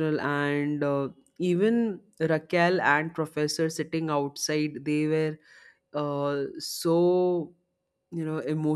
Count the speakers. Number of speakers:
1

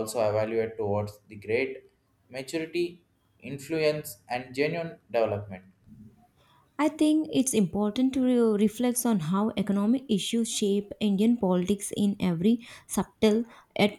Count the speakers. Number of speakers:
2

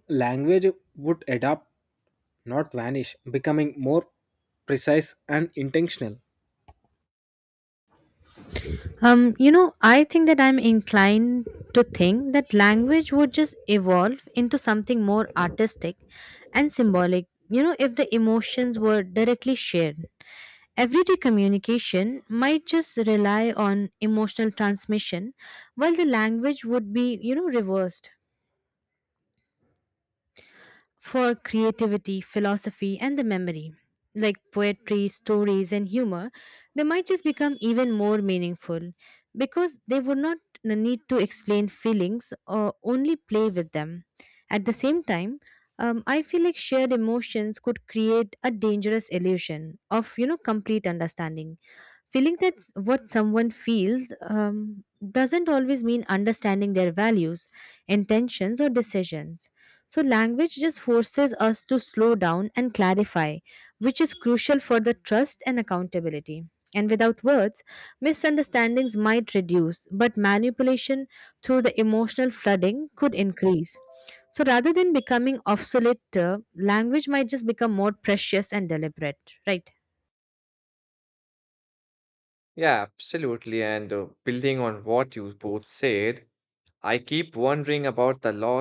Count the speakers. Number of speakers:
3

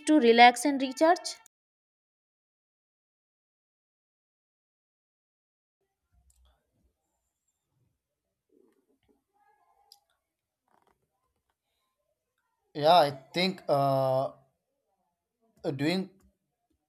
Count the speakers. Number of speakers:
2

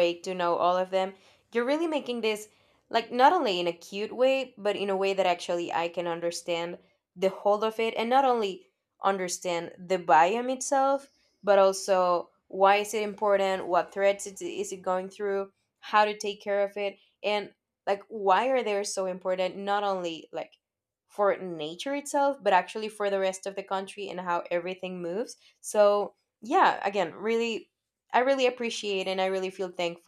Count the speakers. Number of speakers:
1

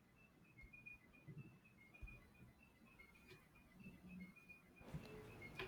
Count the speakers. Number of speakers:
0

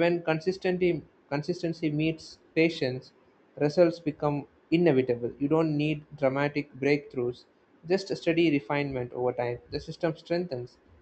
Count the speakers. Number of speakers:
1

